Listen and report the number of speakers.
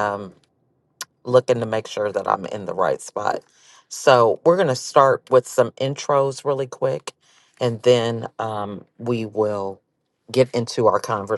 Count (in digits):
1